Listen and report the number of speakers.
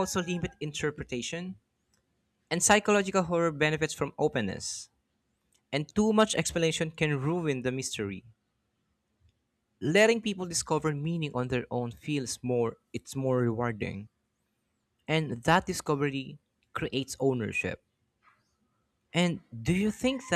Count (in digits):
1